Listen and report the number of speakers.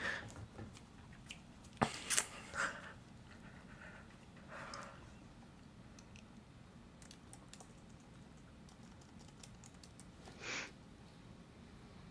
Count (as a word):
zero